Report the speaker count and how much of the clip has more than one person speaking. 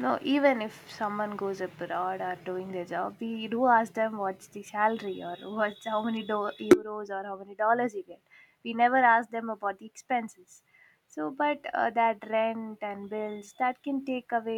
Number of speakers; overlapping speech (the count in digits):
1, no overlap